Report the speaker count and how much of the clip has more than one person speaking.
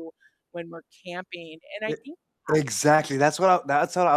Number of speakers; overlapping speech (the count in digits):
2, about 3%